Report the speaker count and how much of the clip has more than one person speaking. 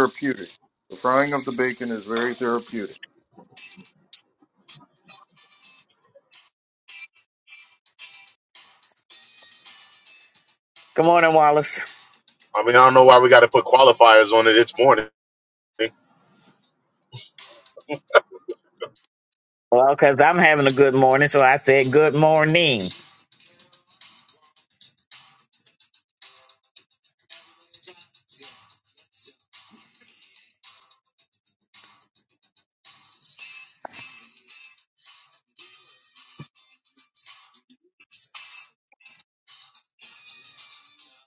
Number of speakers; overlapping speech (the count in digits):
3, no overlap